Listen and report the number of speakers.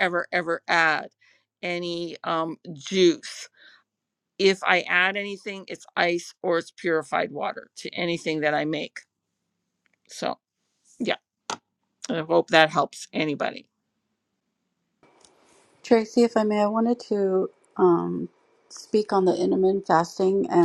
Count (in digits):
2